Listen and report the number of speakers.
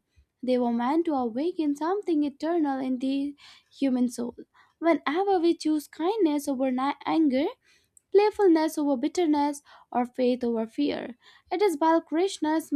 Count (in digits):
1